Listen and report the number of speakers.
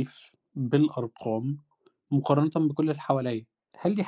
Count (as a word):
one